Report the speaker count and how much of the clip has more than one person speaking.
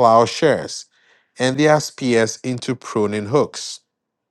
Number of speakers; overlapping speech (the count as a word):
one, no overlap